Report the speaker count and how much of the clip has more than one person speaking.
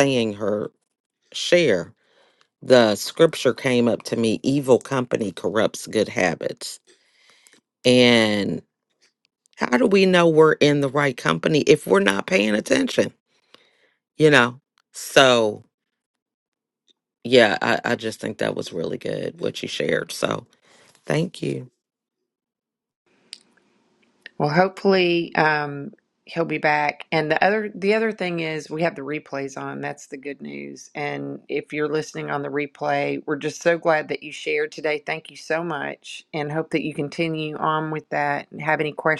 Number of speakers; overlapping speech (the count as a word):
two, no overlap